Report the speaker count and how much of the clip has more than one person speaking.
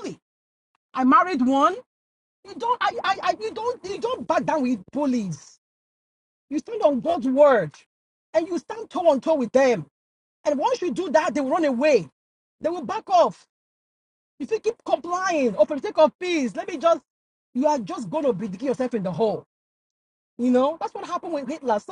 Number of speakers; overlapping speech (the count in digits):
1, no overlap